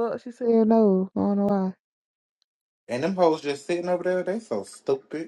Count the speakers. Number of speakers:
two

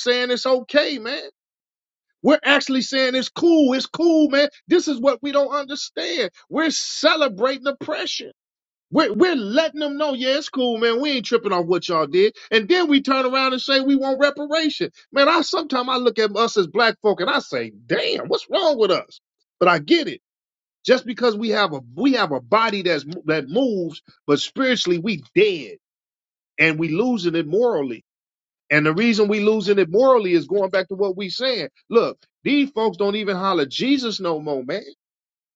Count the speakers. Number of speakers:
one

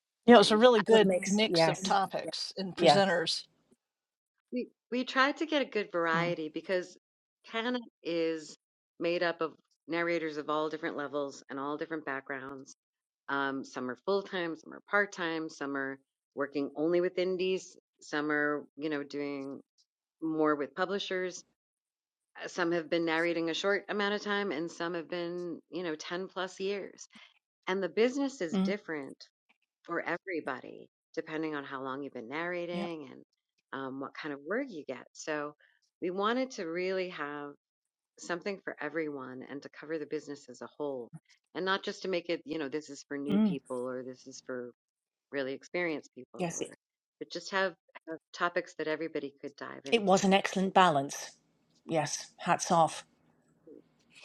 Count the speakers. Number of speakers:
three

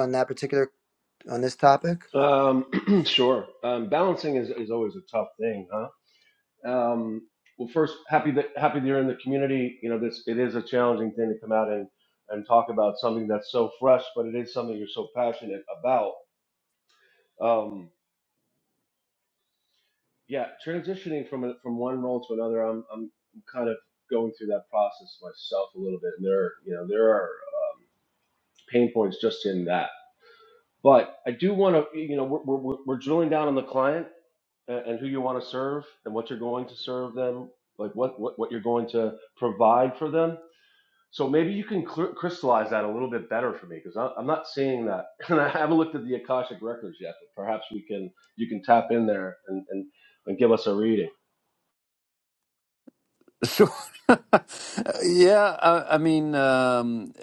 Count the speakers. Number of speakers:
three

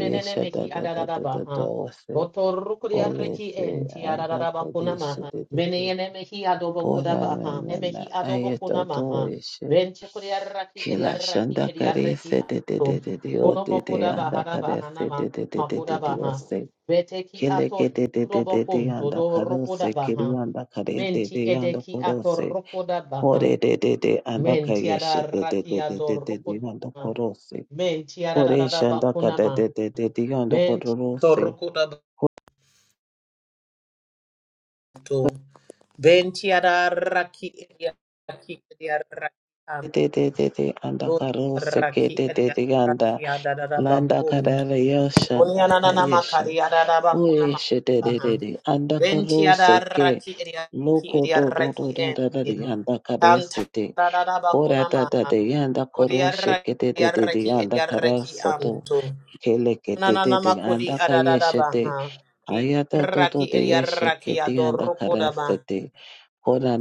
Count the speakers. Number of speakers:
two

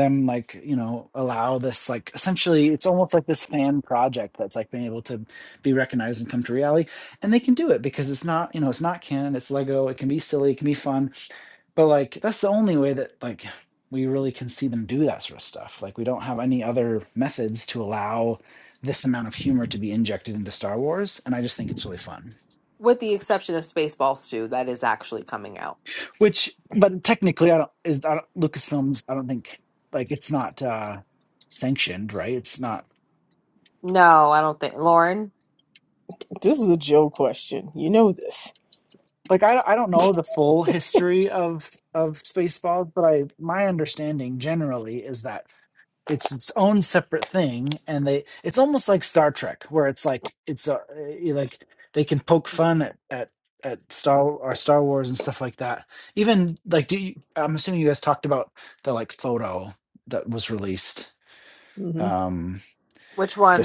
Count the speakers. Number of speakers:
three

